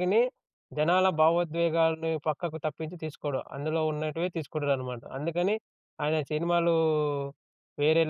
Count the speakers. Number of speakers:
one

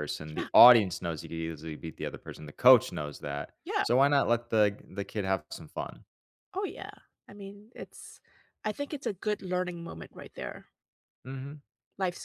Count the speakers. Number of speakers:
two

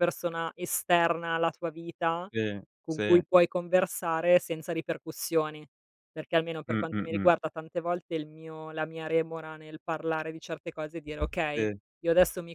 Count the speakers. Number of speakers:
two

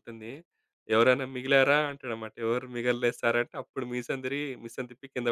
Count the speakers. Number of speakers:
one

